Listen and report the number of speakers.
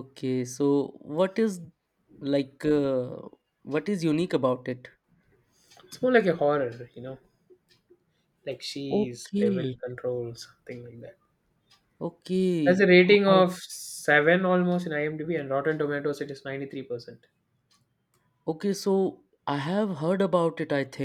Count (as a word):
two